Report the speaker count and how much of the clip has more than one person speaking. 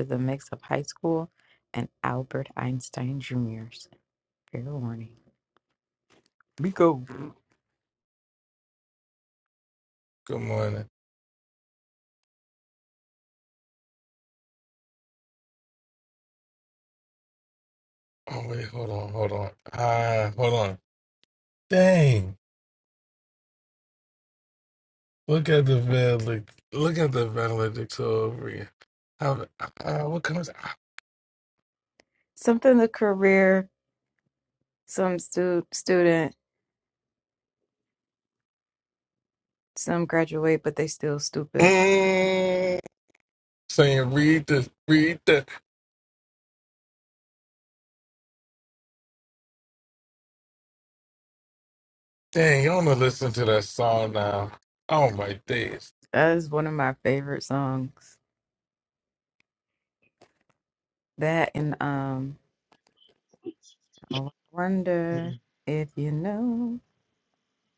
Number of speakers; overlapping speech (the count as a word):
two, under 1%